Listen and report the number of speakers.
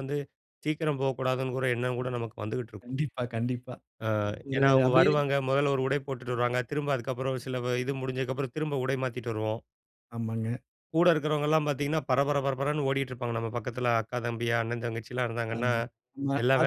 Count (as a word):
two